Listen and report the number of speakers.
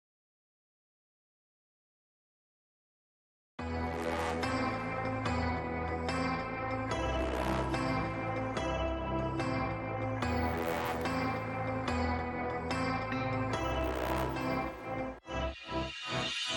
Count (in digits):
0